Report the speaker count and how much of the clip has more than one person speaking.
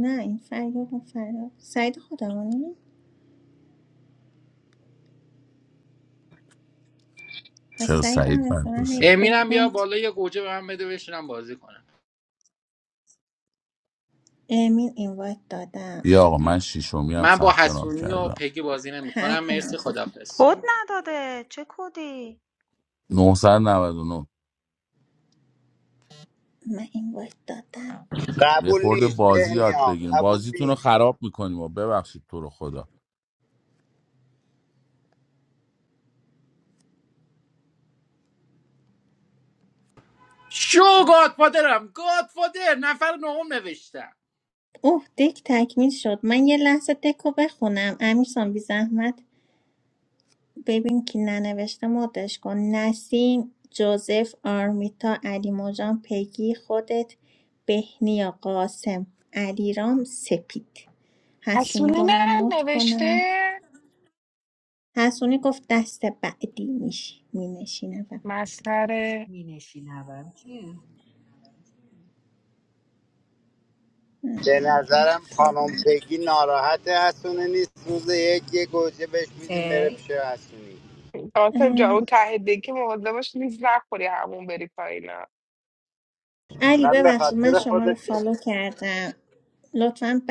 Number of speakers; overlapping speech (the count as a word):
seven, about 12%